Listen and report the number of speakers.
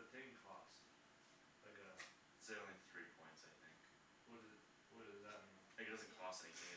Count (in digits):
2